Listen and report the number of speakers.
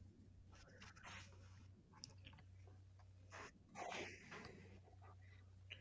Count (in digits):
0